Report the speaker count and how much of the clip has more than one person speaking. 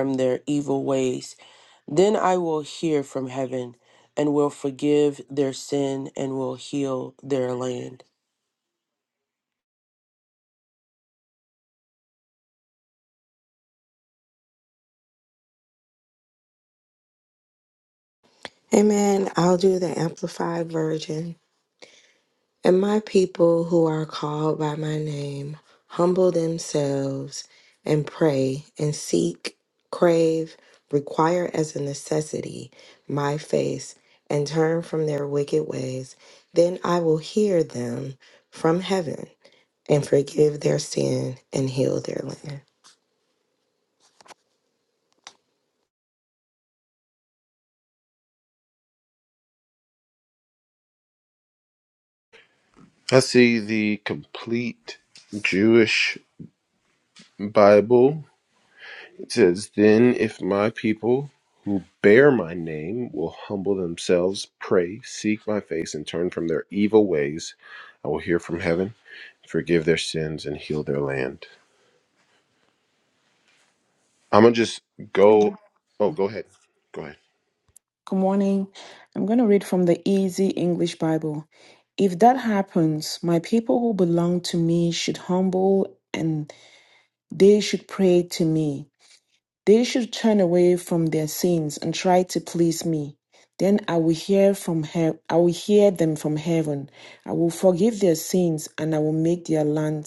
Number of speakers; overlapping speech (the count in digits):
4, under 1%